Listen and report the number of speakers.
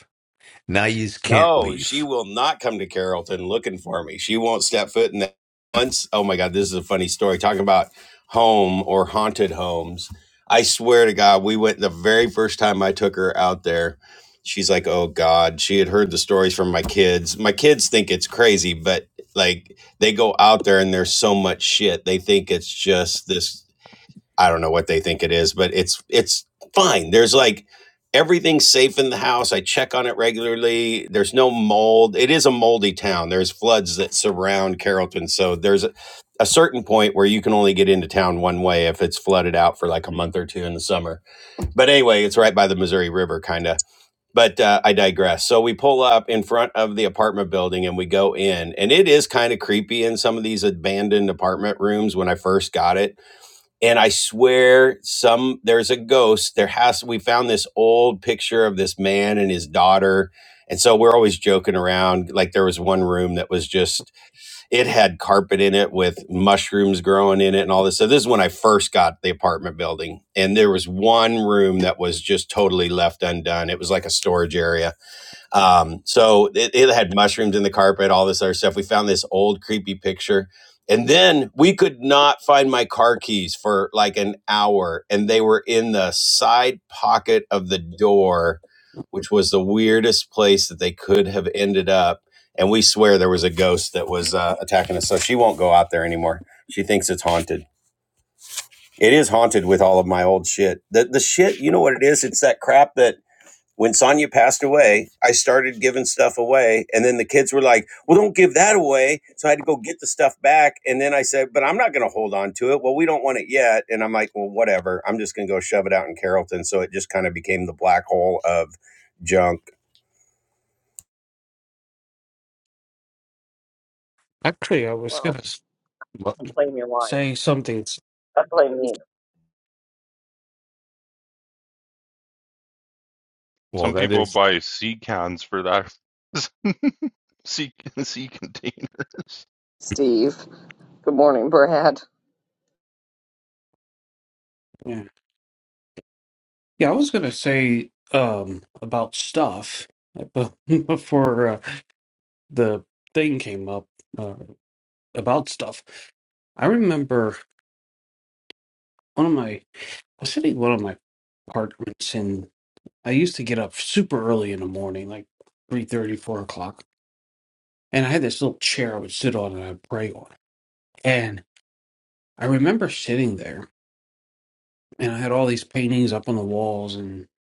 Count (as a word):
five